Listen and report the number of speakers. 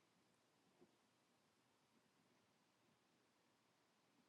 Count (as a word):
zero